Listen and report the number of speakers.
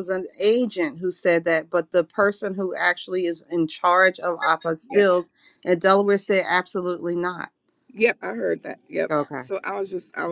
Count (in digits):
2